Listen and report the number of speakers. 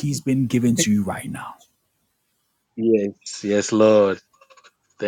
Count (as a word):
two